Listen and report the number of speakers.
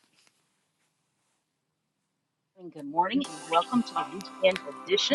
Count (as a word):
one